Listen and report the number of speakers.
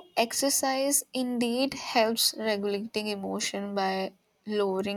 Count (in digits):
1